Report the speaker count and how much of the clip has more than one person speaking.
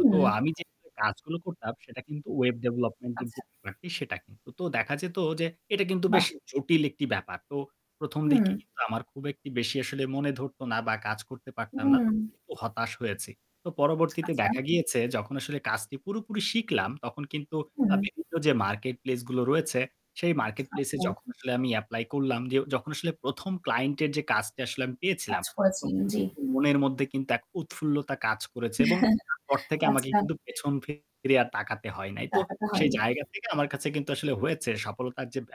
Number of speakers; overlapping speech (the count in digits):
2, about 12%